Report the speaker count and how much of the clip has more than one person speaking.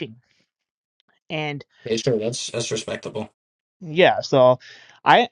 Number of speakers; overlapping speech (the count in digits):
2, no overlap